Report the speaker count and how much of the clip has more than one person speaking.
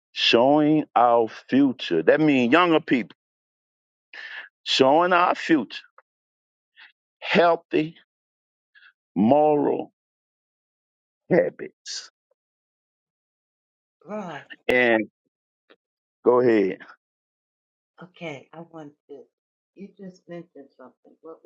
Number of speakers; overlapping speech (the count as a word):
two, no overlap